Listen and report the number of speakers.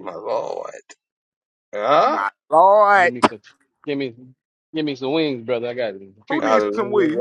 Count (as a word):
three